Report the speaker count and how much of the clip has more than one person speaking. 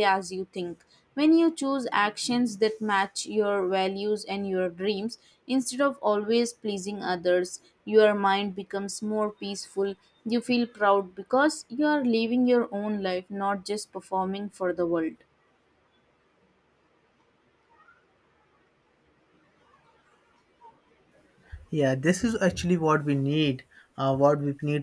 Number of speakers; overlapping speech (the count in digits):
2, no overlap